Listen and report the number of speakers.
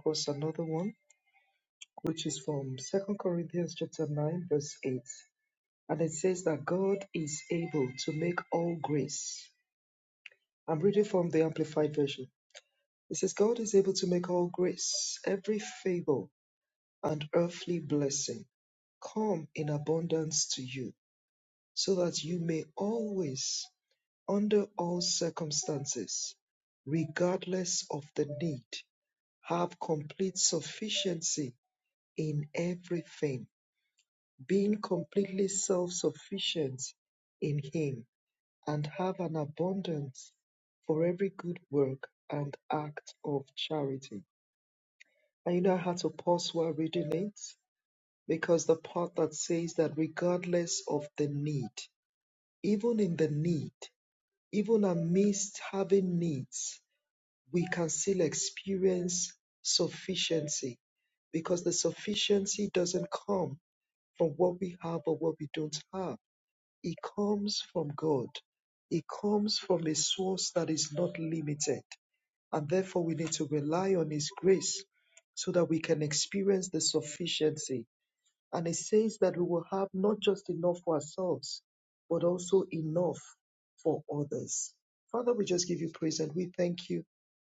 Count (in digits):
1